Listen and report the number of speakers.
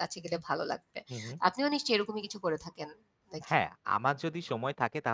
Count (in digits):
2